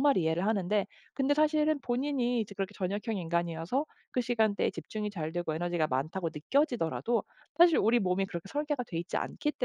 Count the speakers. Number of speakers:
1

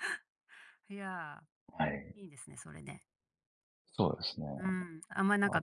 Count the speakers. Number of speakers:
2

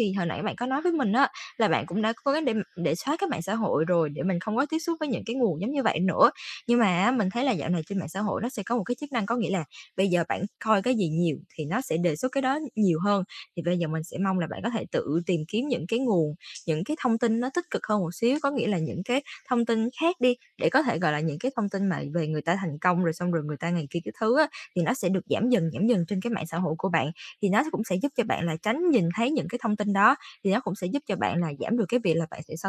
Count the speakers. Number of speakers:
1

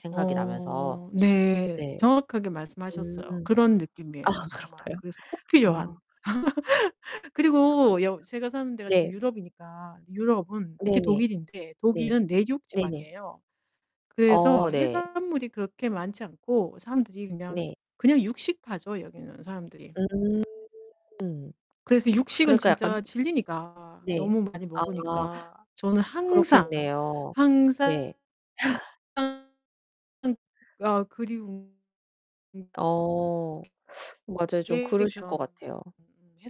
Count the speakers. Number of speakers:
2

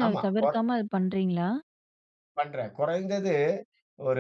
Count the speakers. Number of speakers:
2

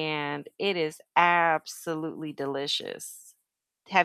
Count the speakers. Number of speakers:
1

